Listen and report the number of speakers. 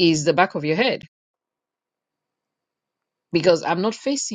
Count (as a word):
one